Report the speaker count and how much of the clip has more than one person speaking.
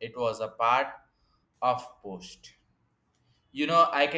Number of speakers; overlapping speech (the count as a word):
one, no overlap